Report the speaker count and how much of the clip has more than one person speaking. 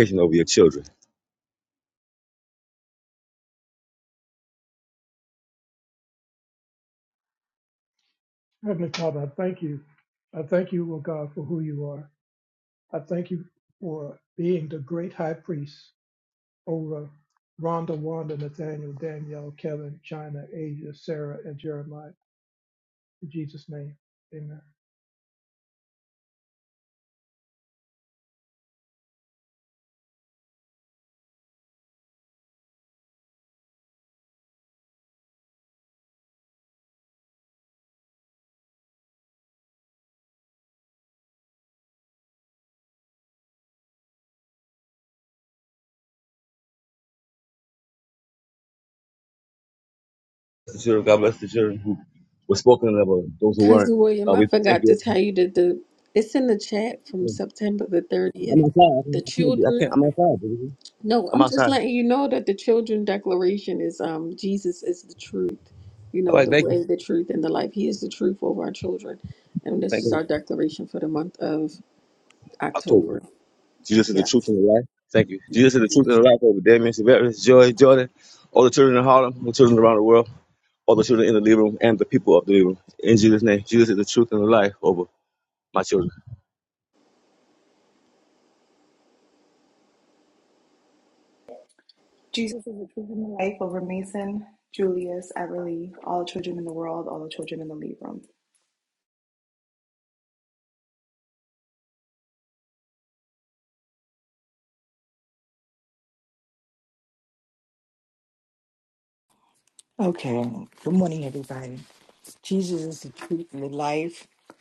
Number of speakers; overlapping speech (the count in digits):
5, about 3%